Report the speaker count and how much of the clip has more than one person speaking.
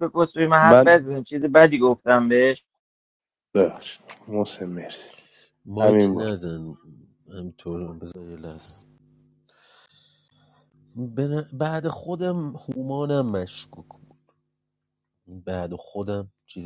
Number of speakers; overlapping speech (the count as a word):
three, about 5%